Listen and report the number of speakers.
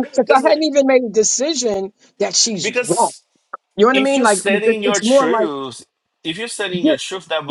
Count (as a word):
two